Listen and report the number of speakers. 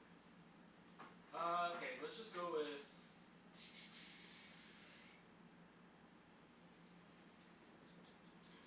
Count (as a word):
one